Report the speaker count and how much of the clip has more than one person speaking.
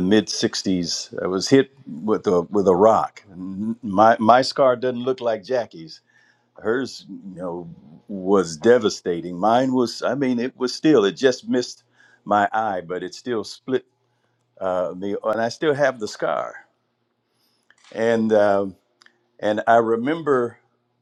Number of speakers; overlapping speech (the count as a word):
one, no overlap